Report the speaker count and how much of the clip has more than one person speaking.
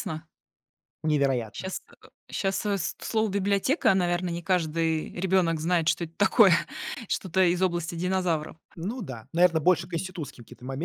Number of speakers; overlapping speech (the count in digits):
2, under 1%